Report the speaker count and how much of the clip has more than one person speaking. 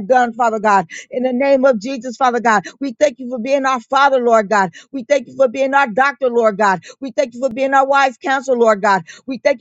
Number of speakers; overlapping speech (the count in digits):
1, no overlap